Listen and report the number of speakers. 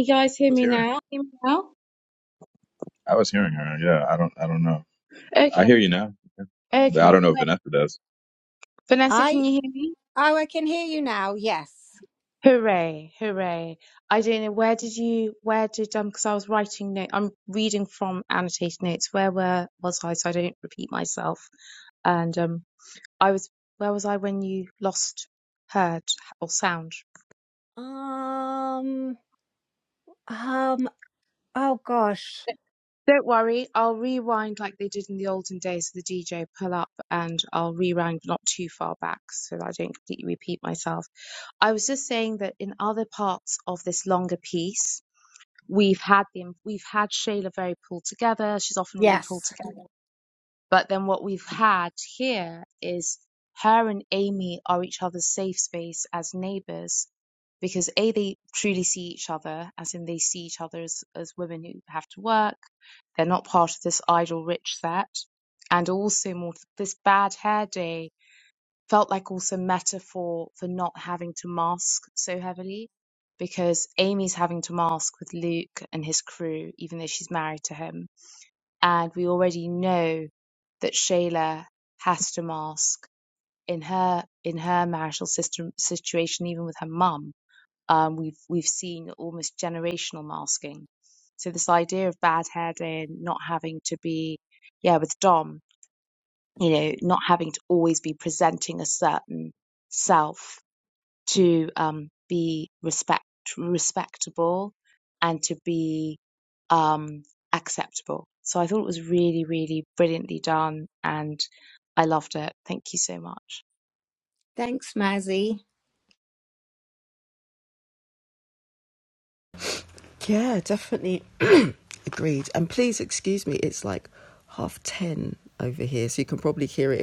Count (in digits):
4